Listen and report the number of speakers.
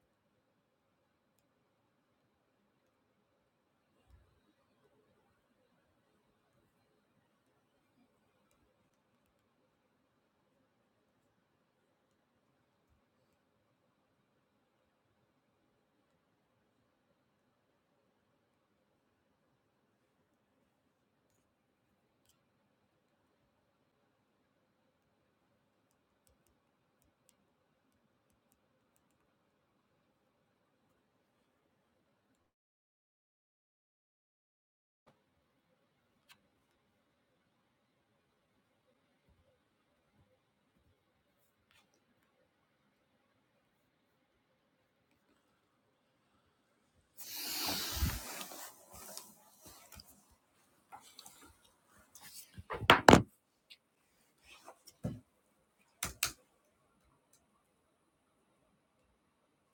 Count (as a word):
zero